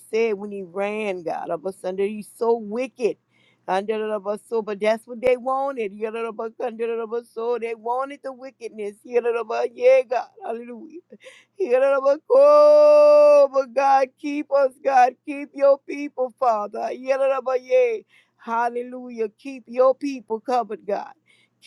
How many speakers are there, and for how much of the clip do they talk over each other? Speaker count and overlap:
1, no overlap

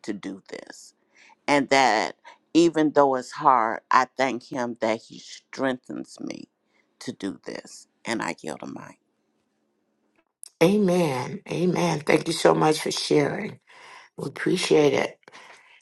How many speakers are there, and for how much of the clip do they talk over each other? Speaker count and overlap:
2, no overlap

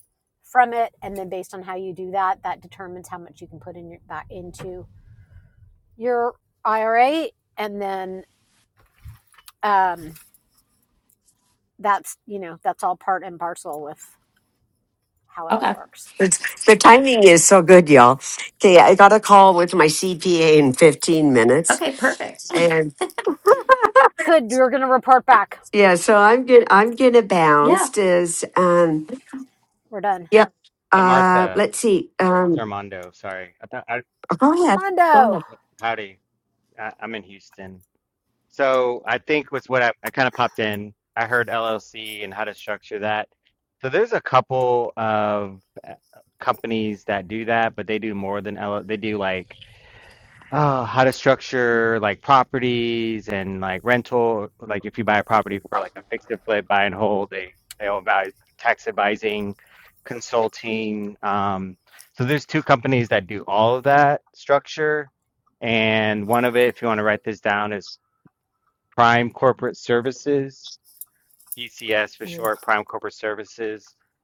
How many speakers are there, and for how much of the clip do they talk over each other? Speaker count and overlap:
4, about 2%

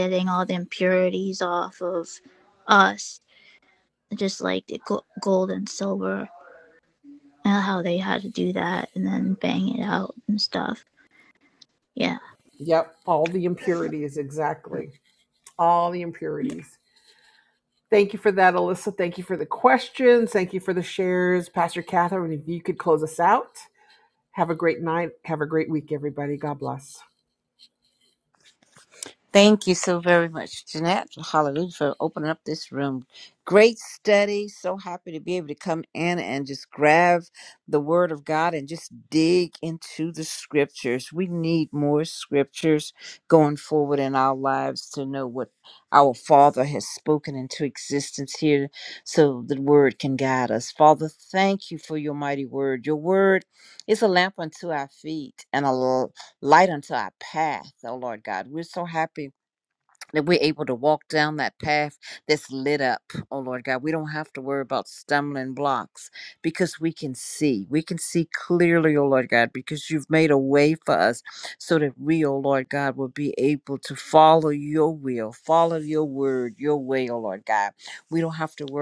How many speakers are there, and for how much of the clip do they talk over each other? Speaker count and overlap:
3, no overlap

